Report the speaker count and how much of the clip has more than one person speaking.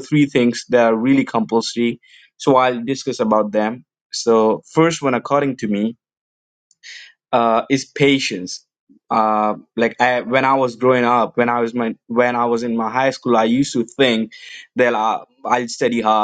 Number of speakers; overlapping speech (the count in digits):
1, no overlap